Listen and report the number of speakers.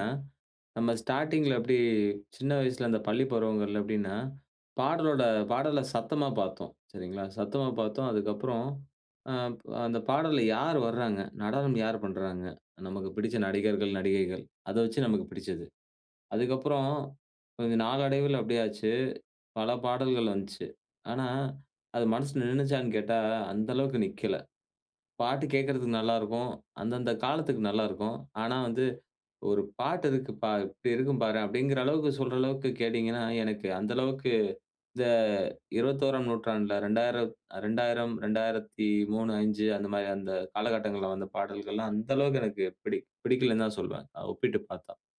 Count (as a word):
one